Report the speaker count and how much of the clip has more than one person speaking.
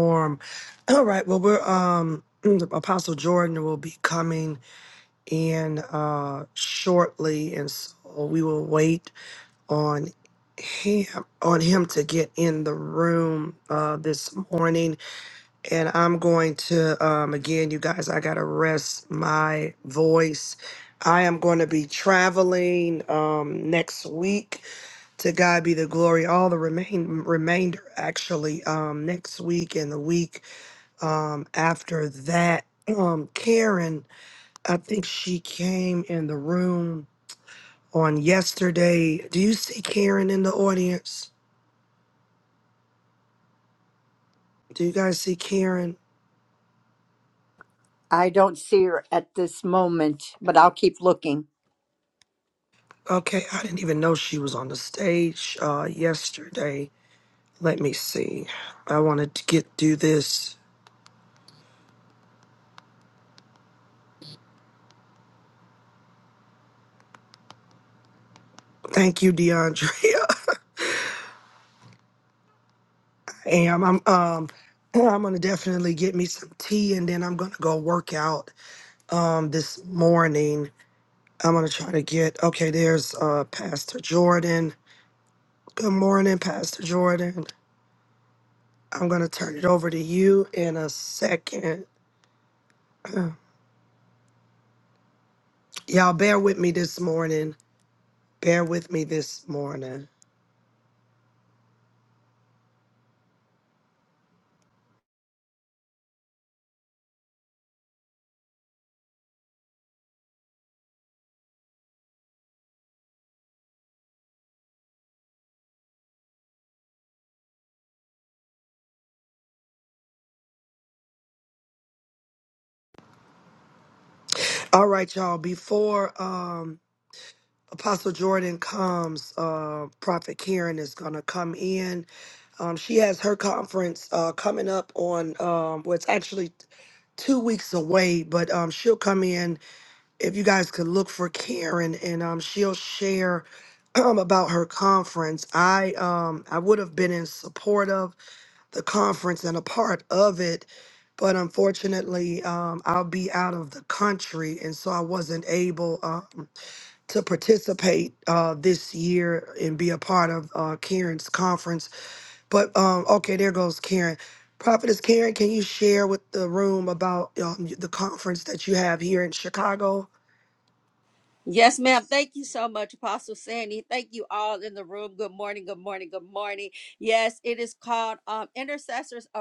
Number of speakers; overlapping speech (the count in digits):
3, no overlap